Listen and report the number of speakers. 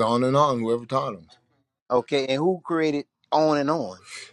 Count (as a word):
two